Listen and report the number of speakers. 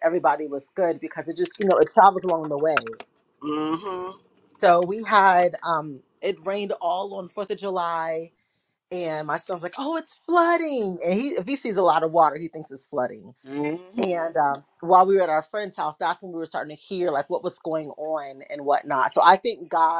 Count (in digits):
2